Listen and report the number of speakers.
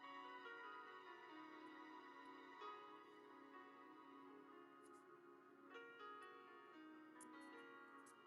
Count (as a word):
zero